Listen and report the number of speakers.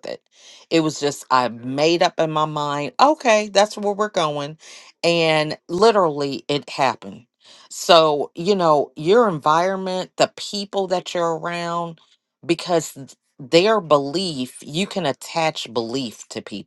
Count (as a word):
one